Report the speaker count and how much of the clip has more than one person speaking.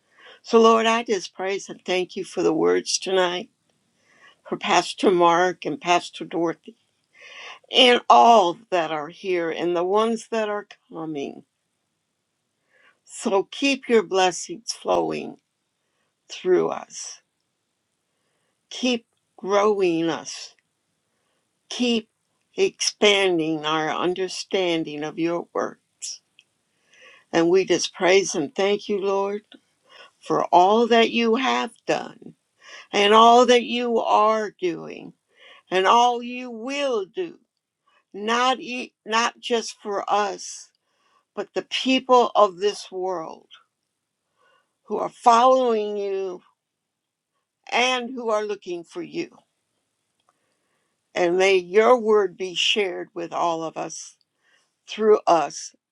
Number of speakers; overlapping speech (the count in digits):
1, no overlap